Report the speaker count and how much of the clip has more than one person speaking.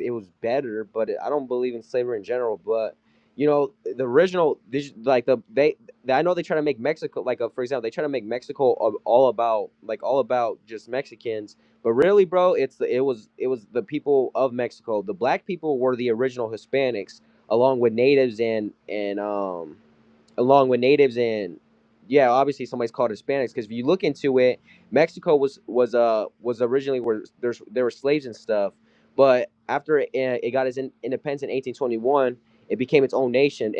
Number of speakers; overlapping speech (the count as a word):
one, no overlap